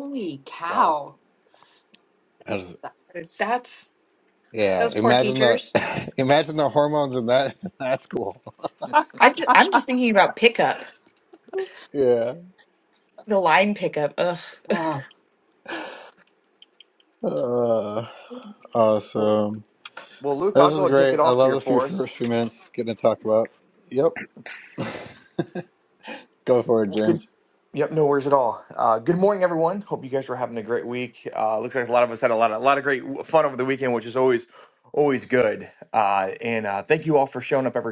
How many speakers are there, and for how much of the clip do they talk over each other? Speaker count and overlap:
4, about 8%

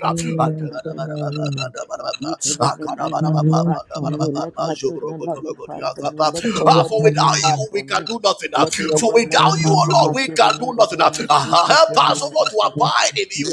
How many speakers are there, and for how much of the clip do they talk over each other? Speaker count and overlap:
3, about 58%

